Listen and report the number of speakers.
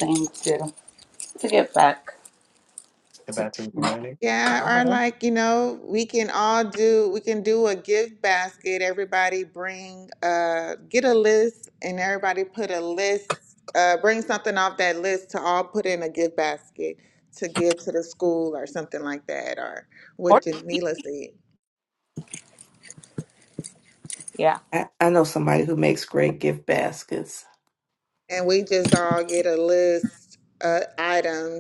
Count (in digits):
4